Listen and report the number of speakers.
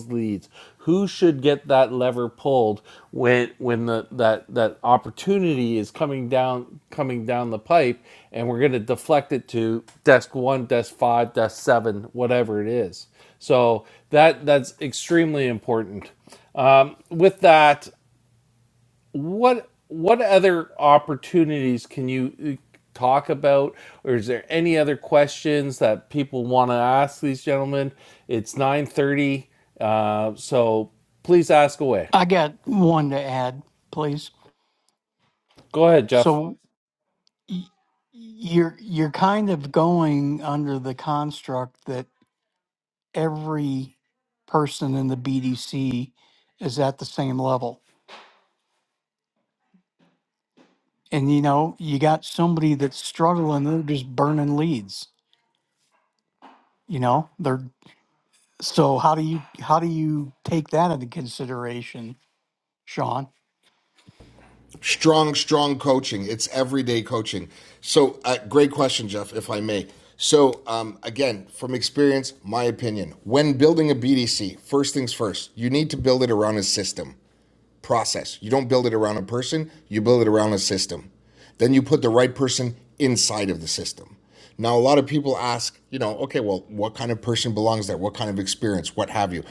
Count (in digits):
3